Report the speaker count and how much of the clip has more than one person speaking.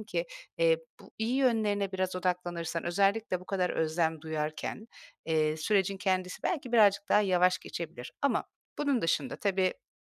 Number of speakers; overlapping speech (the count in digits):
1, no overlap